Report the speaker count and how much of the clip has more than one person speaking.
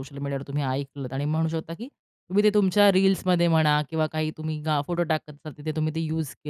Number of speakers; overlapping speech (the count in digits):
1, no overlap